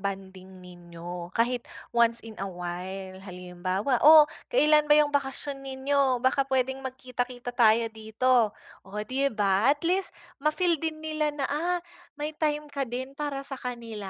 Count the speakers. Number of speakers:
one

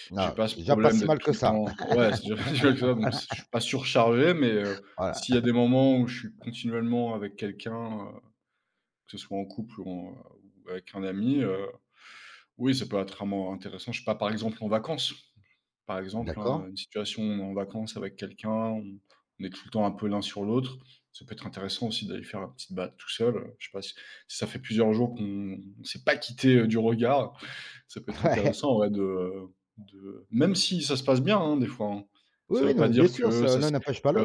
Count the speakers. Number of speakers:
two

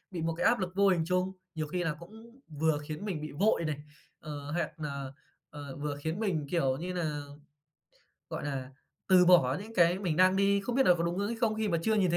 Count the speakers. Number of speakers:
one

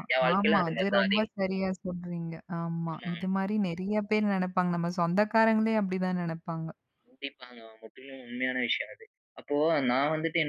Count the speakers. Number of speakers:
two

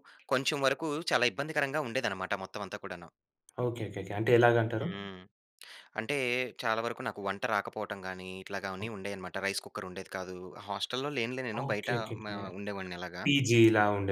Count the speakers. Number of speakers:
two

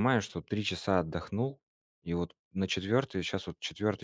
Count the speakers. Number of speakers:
one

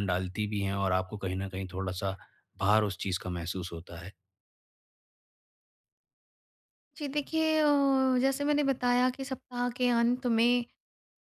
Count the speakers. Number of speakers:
two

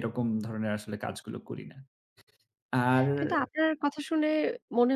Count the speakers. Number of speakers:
two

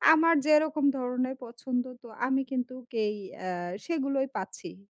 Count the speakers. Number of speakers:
one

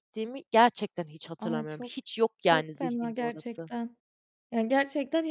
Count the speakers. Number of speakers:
two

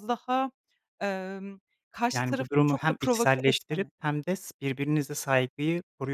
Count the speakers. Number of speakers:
two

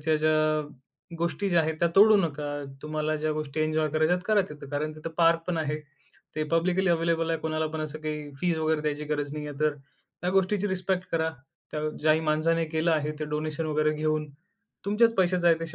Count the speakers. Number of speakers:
one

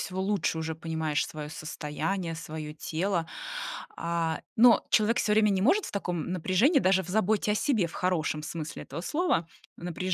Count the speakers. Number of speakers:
one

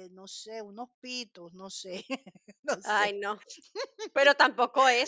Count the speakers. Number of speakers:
two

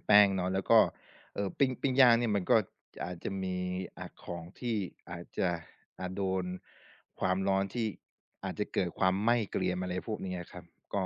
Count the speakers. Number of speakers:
one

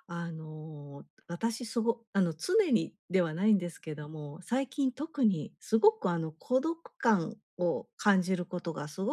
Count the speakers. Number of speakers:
one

